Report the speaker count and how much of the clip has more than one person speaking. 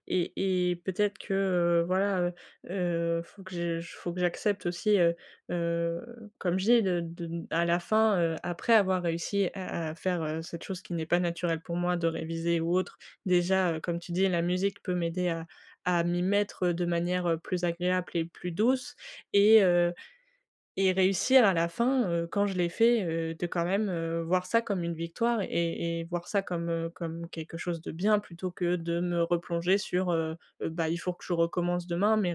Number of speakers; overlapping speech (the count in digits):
1, no overlap